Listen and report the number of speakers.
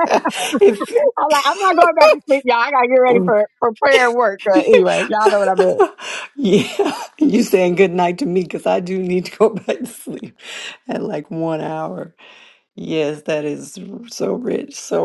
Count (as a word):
two